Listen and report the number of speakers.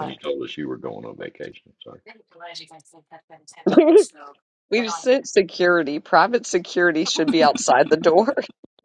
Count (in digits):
3